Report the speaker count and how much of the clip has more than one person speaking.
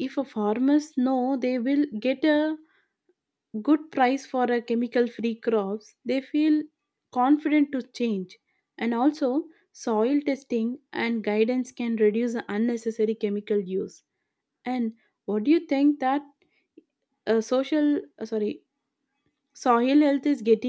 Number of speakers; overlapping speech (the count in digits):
1, no overlap